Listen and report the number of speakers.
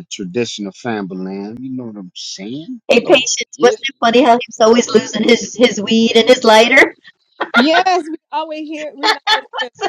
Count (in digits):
3